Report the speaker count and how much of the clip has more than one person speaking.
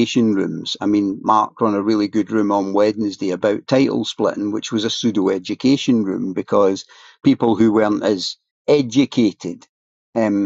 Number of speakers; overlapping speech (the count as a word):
one, no overlap